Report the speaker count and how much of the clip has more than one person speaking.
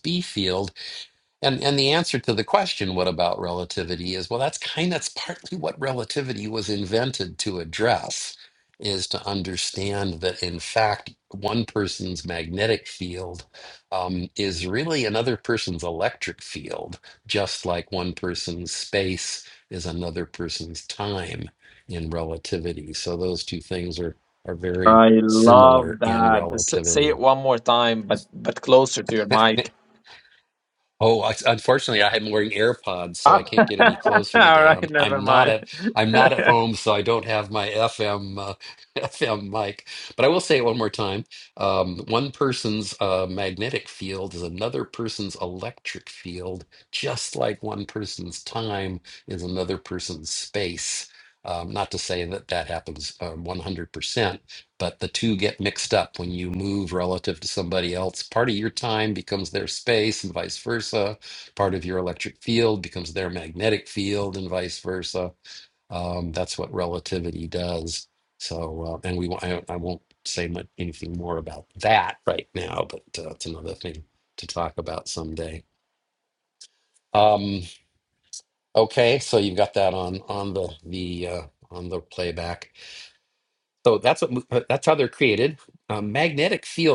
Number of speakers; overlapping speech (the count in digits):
2, about 3%